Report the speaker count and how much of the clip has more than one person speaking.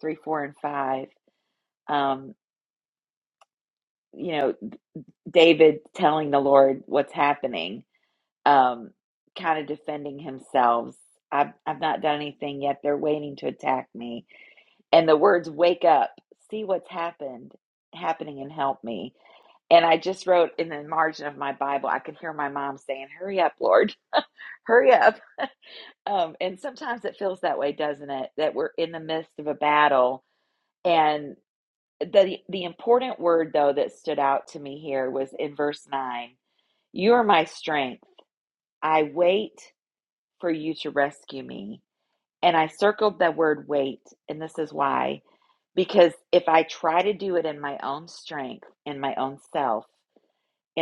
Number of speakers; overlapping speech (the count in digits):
1, no overlap